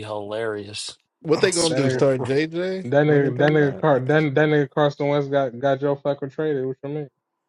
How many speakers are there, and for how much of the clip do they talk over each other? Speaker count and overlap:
3, about 19%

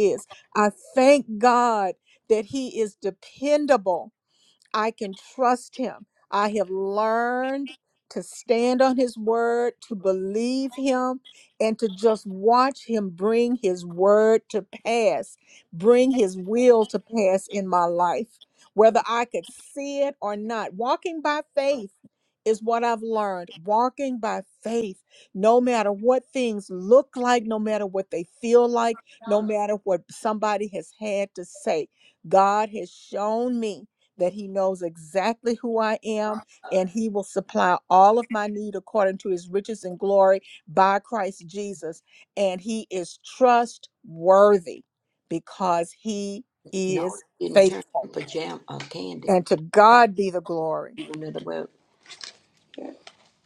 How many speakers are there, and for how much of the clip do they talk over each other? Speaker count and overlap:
2, about 1%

